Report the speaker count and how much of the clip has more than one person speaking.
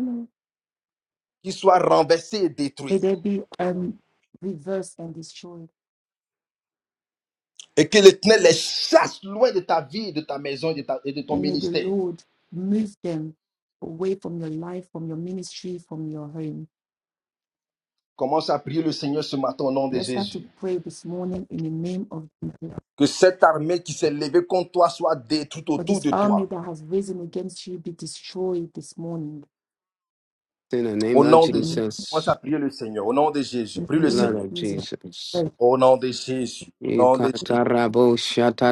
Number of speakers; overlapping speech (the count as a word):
three, about 11%